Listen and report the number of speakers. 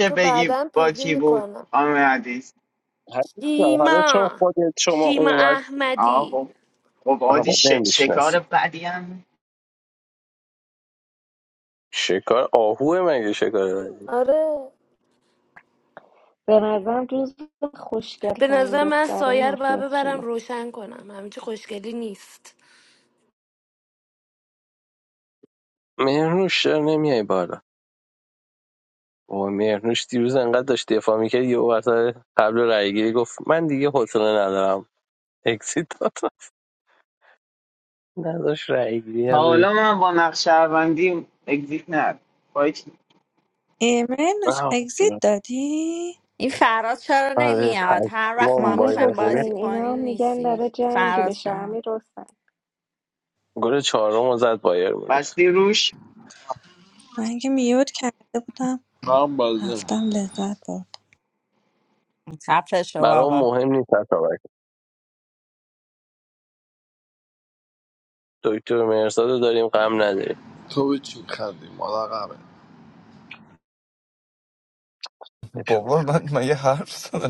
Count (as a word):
eight